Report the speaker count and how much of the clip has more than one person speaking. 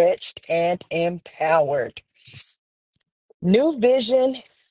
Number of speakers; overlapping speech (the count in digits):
1, no overlap